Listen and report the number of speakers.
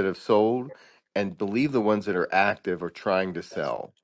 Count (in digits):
1